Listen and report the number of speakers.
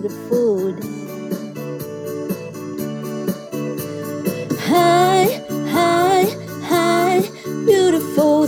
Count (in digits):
1